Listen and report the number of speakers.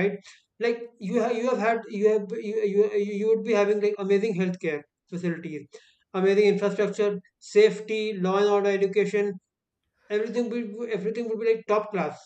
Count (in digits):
1